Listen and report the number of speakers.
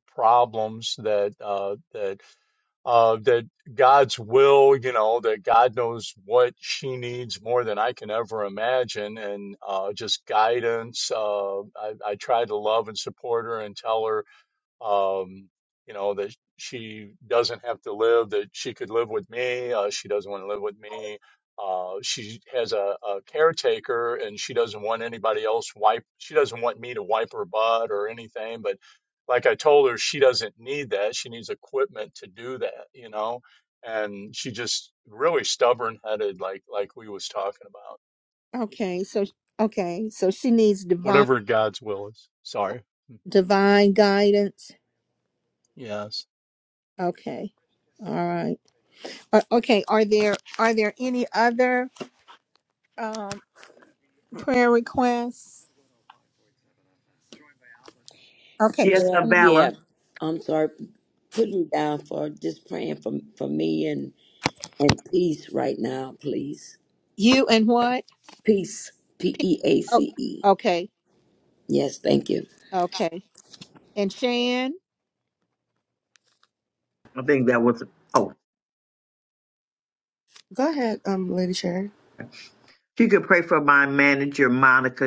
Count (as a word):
five